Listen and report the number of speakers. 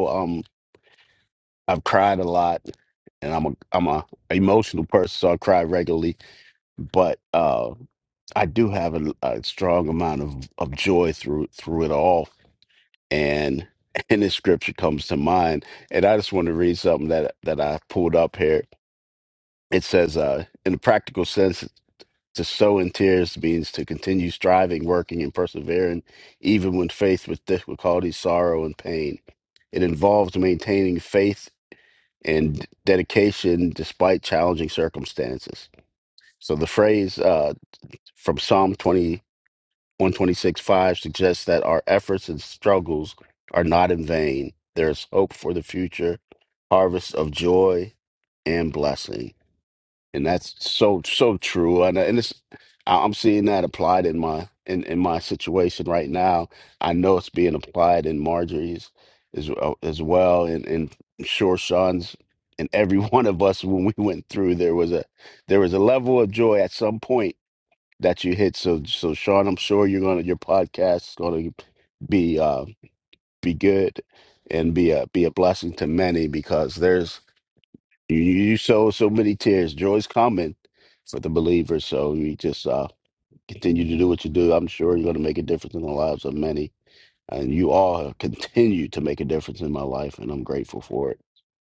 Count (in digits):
1